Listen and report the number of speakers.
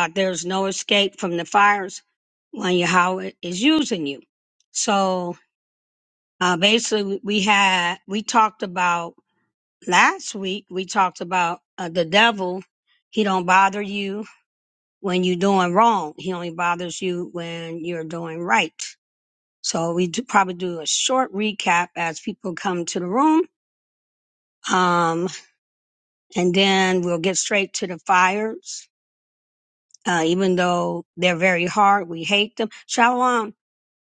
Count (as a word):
one